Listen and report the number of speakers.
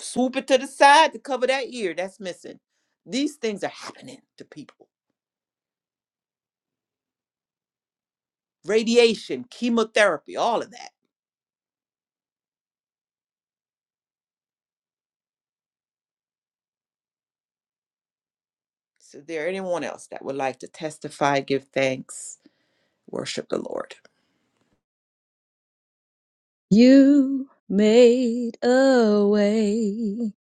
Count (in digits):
2